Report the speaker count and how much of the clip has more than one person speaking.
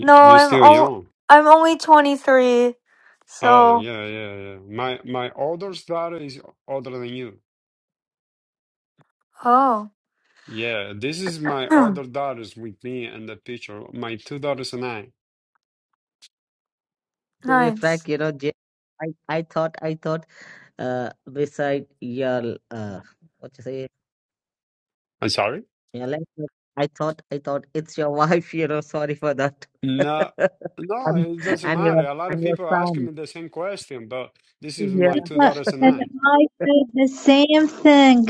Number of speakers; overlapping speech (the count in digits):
4, about 12%